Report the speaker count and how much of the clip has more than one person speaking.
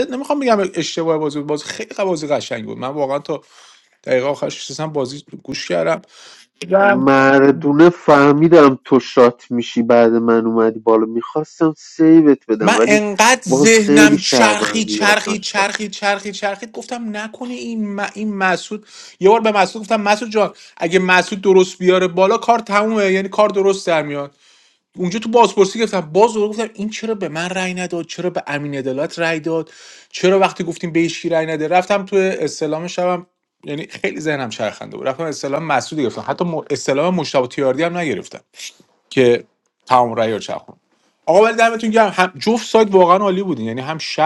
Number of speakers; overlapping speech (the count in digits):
2, about 6%